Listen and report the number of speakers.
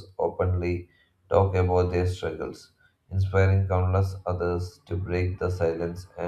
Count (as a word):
one